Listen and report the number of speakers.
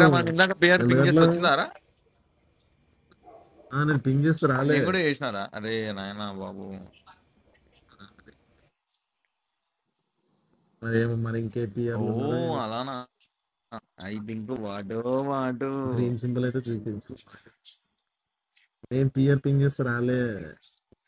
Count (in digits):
2